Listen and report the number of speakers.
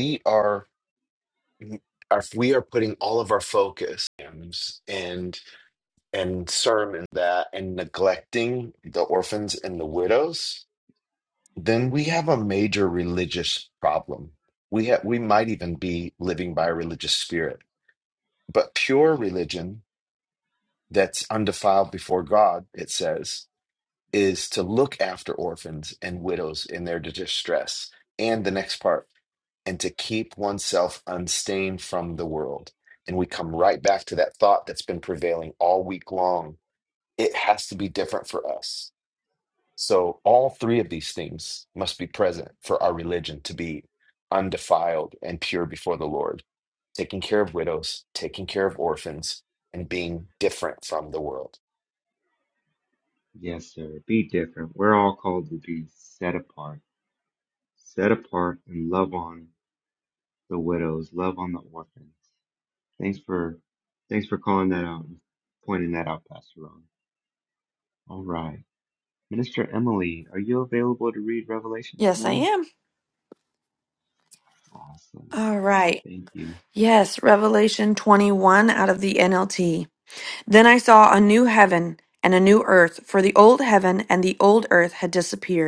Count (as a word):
three